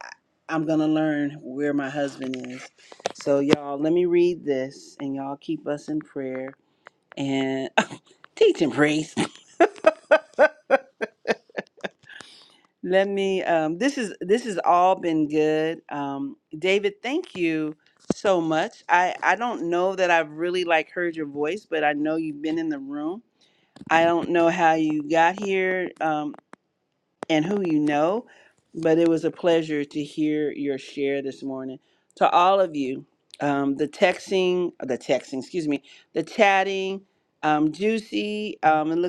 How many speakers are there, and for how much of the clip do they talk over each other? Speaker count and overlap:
one, no overlap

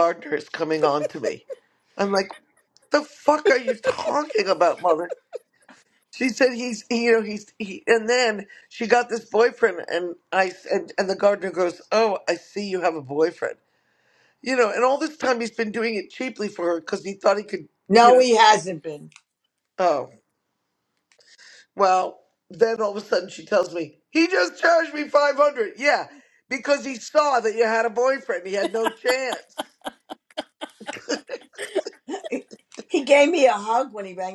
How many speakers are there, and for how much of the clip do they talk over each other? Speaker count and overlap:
two, about 1%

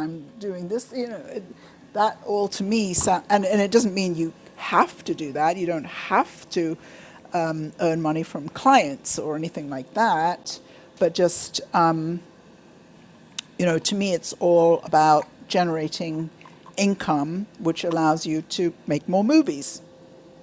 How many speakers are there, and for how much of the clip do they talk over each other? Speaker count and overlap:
one, no overlap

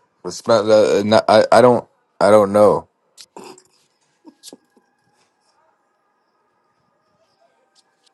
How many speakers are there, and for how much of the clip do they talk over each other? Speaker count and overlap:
one, no overlap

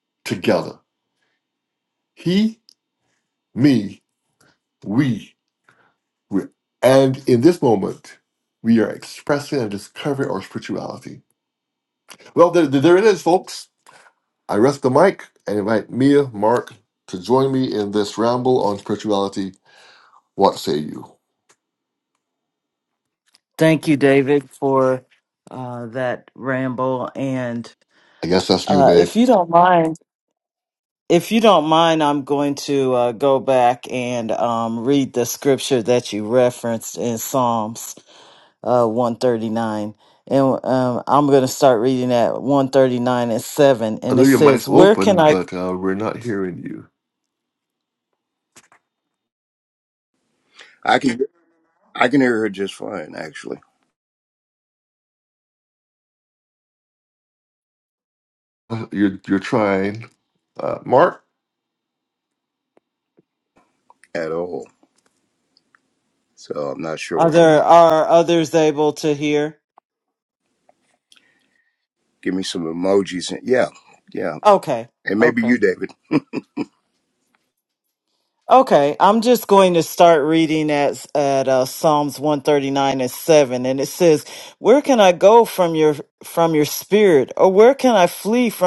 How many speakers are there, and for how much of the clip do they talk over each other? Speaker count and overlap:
three, about 3%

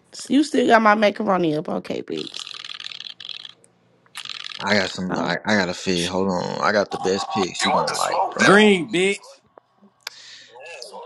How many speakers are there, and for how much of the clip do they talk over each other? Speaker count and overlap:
three, about 12%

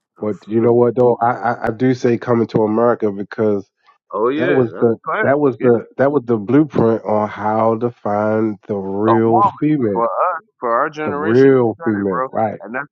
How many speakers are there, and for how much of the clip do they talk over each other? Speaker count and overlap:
two, about 35%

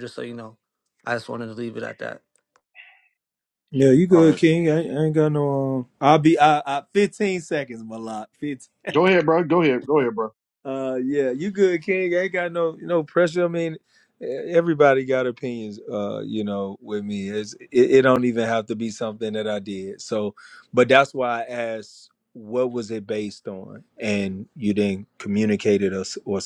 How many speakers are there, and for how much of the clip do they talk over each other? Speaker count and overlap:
three, about 1%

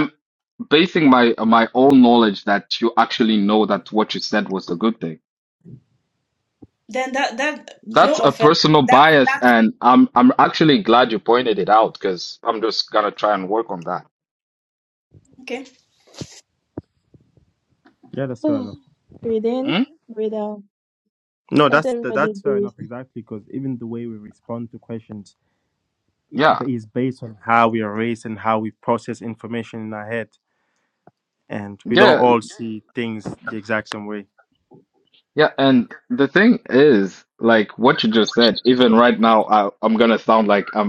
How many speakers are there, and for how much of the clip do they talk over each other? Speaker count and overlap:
four, about 8%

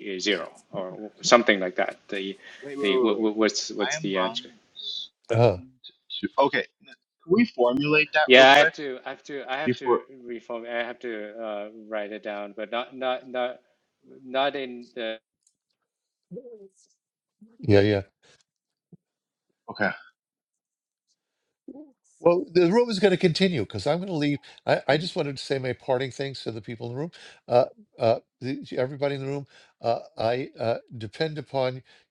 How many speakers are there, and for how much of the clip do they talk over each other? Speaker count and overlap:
three, about 6%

